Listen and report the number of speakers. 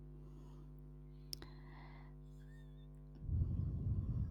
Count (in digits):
0